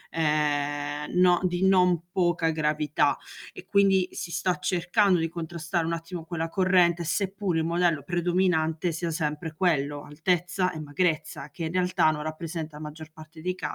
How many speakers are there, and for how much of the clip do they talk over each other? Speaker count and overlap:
1, no overlap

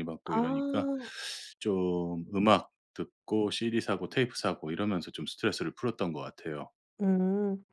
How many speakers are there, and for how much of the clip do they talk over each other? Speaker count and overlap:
2, about 8%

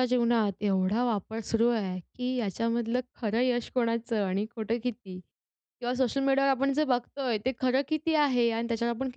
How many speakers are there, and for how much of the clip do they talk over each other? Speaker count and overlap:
1, no overlap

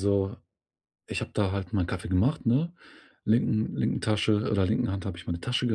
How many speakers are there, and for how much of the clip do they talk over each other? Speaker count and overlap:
1, no overlap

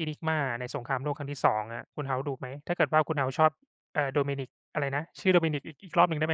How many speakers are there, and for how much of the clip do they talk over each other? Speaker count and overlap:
1, no overlap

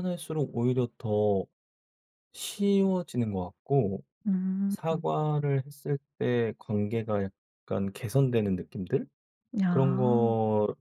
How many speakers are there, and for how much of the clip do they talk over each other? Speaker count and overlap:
2, about 8%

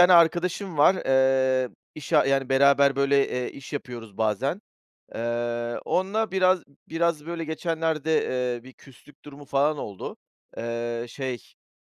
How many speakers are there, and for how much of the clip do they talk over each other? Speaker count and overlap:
1, no overlap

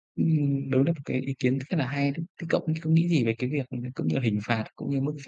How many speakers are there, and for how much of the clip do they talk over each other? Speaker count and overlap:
1, no overlap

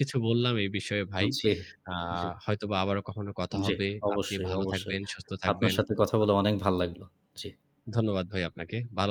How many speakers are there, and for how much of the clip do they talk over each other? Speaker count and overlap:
2, about 18%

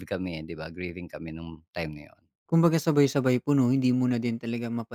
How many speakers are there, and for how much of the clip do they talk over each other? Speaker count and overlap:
2, no overlap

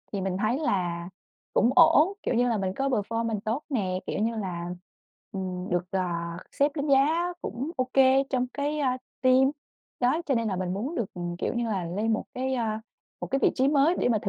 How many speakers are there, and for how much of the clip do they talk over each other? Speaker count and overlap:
1, no overlap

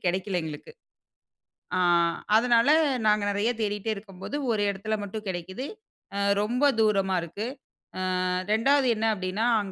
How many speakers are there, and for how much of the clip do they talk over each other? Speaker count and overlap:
1, no overlap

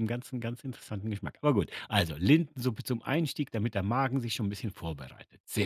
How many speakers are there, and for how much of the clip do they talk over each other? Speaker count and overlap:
1, no overlap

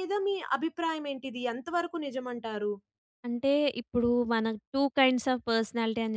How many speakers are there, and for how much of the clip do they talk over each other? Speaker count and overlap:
2, no overlap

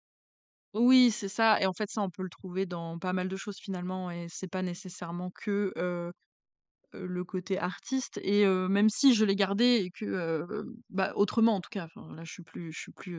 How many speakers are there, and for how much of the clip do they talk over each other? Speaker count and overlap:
1, no overlap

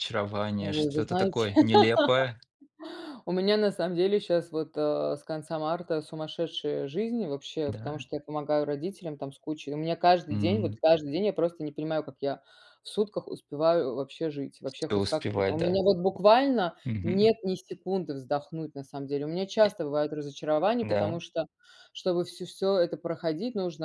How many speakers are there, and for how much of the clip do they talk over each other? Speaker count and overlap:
2, about 15%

